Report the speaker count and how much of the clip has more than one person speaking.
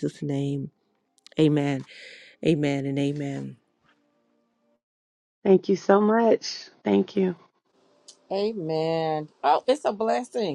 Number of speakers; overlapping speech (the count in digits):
3, no overlap